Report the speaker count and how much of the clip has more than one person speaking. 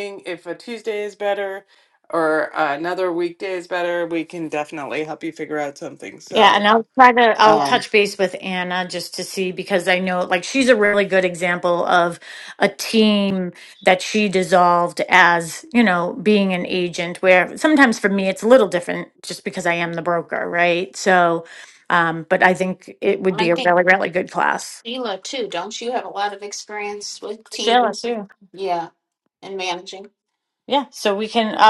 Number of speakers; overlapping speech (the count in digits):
3, about 5%